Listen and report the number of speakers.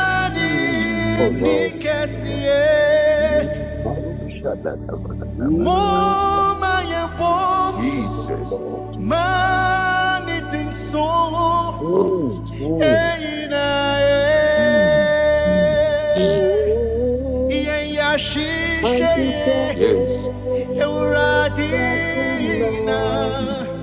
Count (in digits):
3